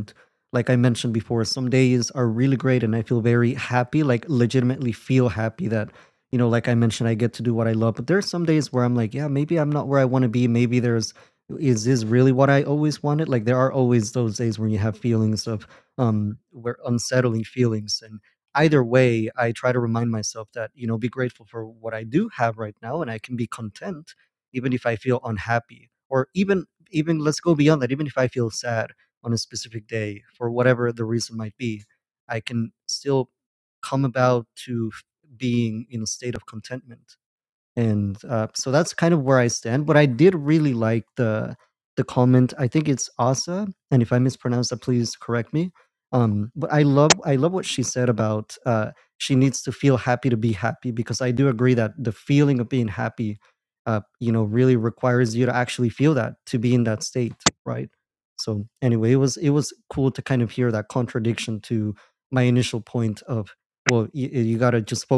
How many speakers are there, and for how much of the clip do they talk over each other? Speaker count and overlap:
1, no overlap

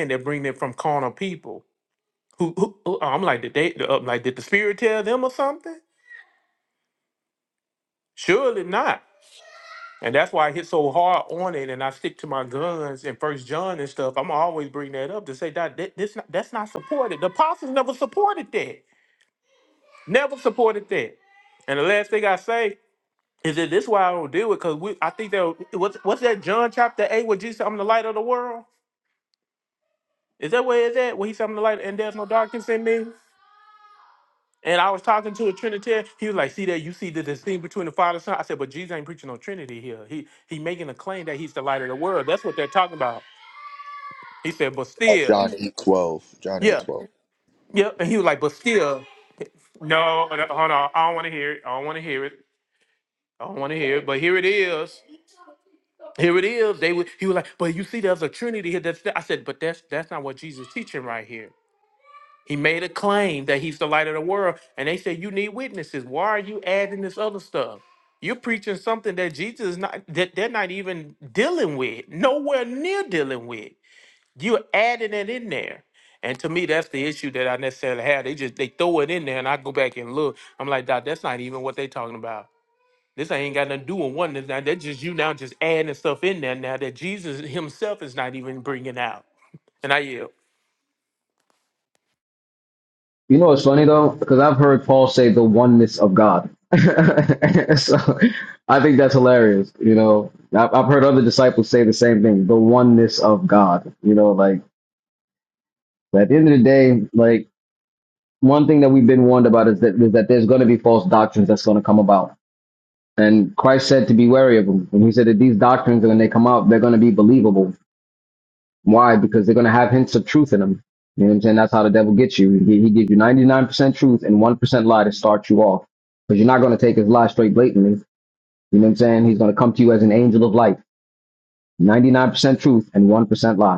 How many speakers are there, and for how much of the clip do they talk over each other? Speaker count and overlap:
3, about 1%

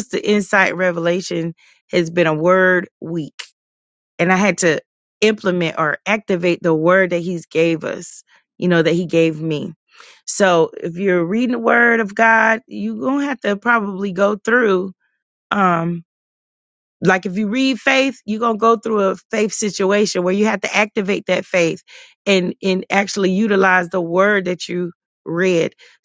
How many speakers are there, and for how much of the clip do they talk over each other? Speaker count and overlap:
1, no overlap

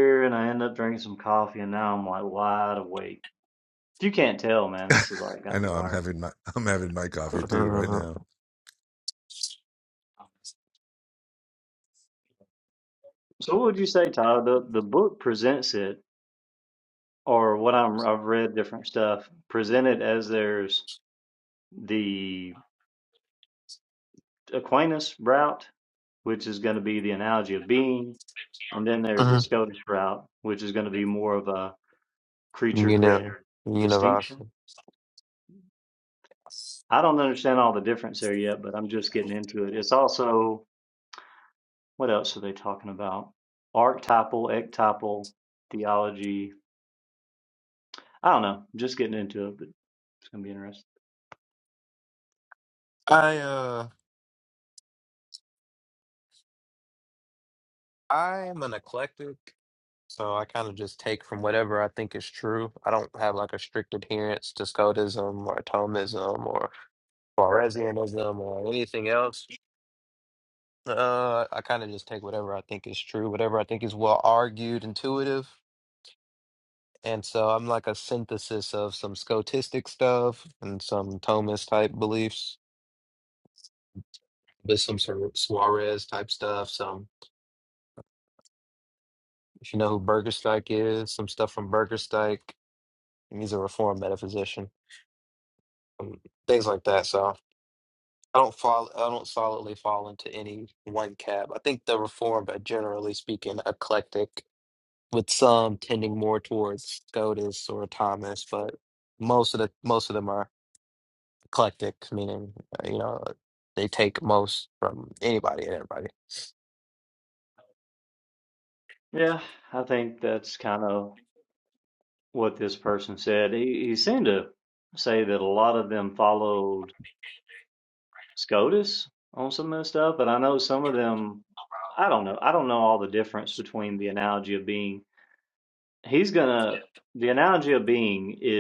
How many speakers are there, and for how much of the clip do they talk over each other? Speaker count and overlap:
3, about 2%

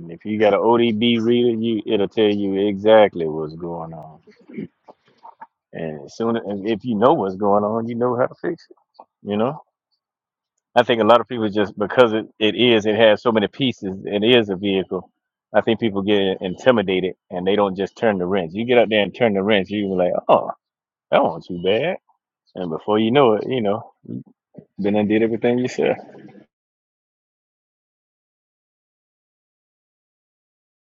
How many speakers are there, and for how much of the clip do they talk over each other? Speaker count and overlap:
1, no overlap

